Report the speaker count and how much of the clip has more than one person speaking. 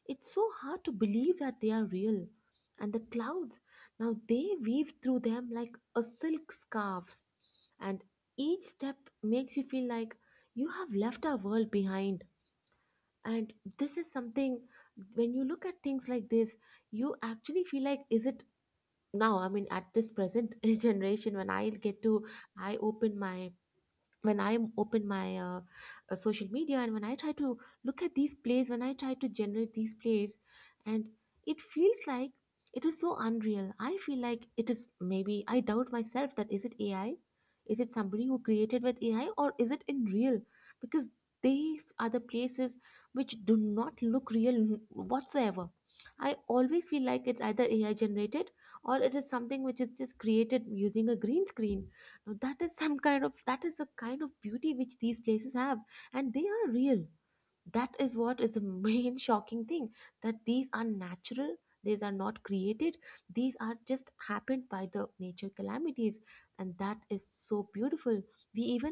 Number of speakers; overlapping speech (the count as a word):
one, no overlap